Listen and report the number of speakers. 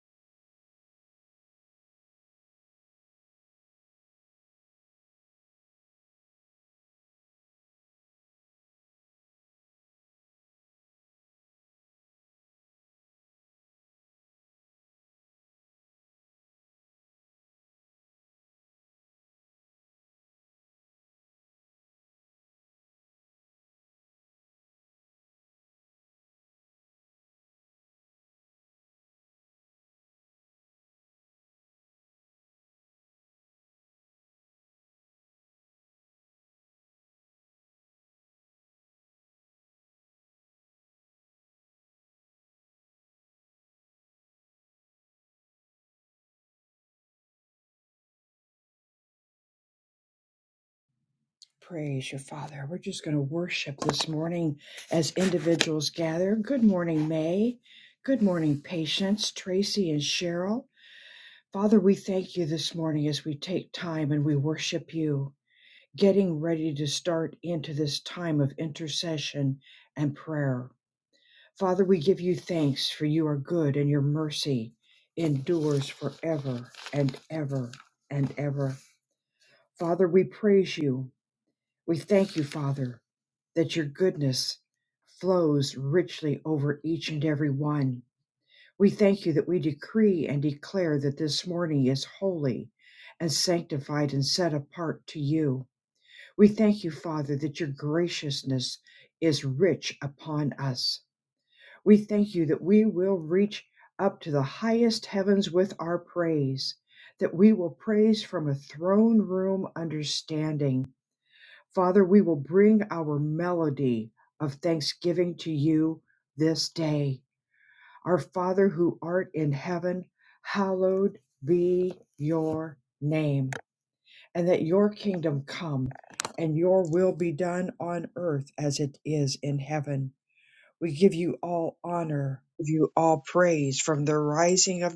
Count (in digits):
1